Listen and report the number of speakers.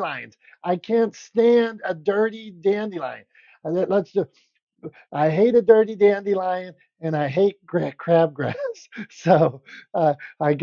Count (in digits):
1